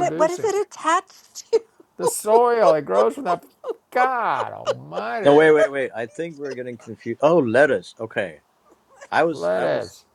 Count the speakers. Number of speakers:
3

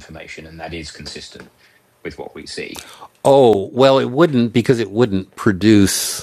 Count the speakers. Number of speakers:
2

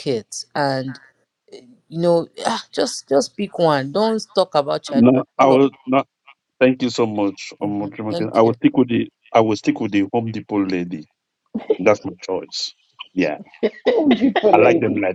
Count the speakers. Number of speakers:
3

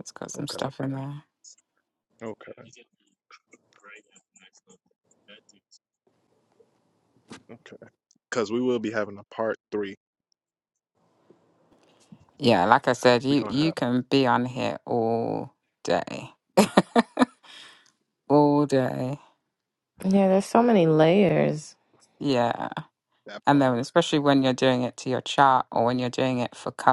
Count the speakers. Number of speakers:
3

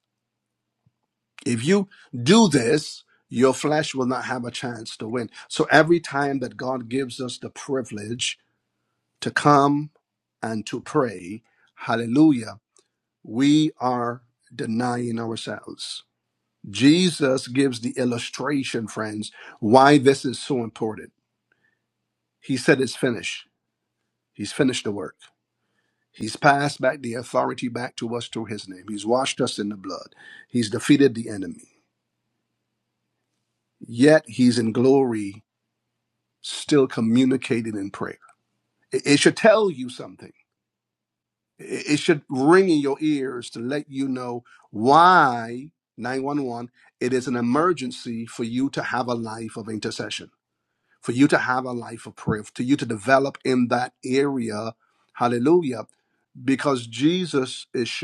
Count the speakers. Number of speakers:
1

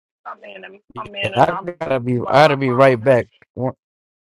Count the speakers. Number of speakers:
2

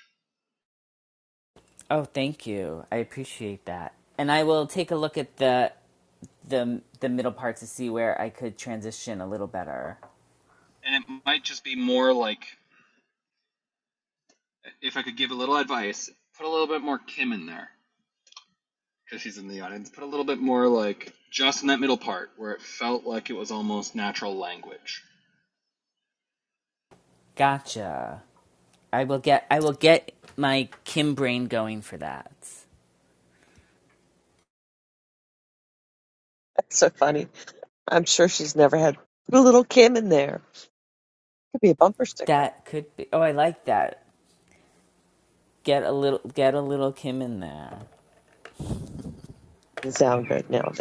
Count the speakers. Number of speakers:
3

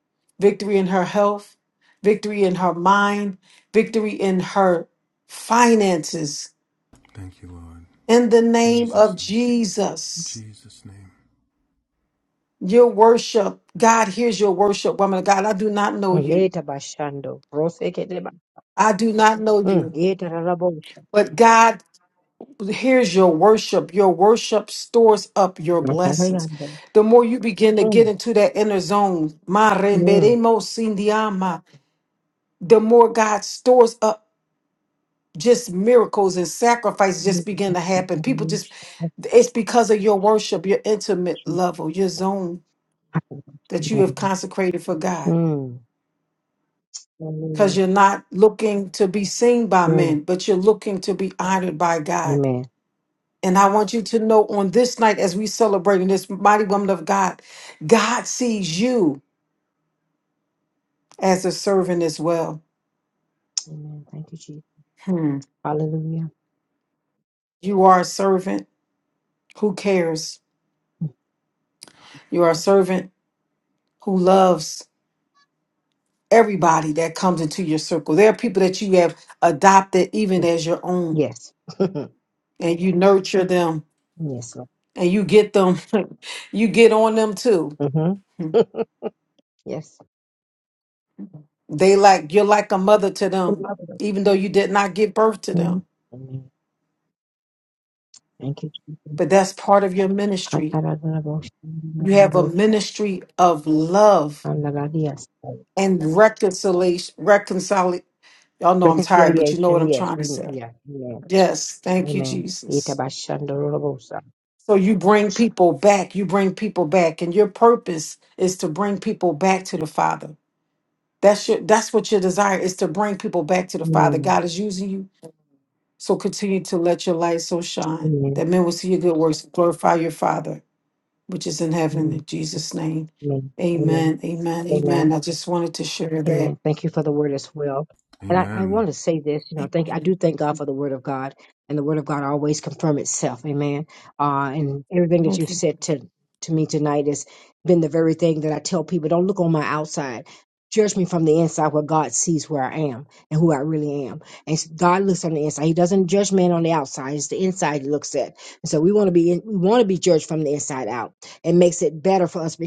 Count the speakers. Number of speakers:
3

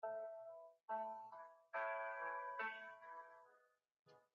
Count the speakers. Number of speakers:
0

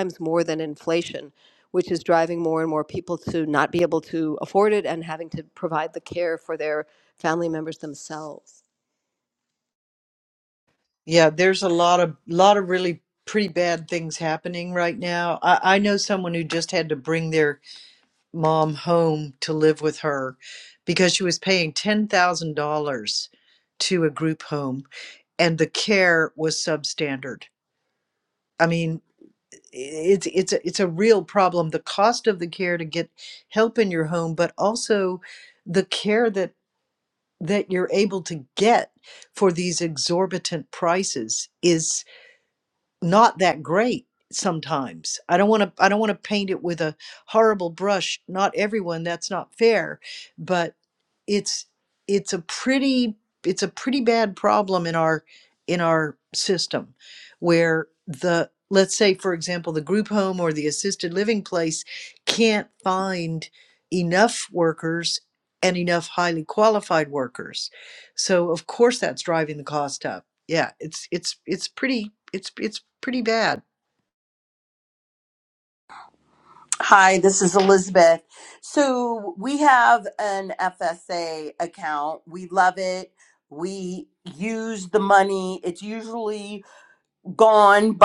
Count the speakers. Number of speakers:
3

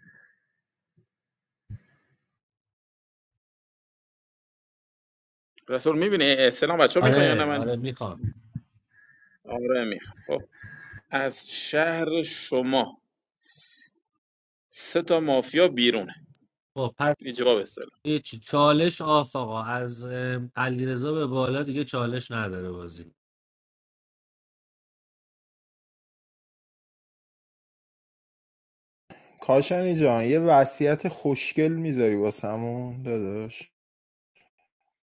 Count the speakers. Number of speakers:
3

